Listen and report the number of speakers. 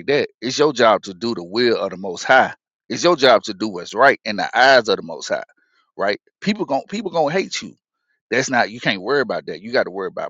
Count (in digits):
1